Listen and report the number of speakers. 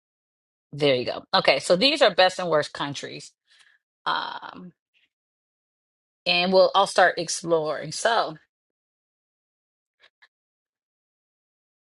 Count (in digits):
1